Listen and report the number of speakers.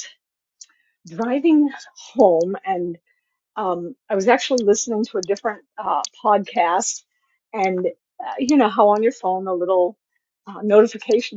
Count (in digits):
1